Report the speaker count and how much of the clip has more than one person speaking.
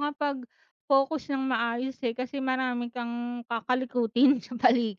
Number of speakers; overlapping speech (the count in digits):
1, no overlap